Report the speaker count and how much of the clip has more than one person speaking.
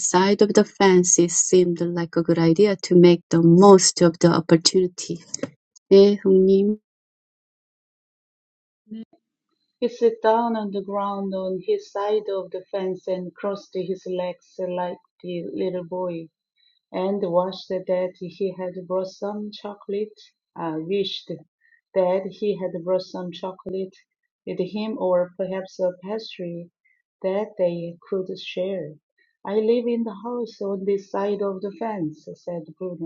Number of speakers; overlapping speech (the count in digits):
2, no overlap